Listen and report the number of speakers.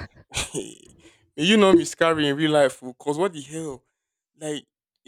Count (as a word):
one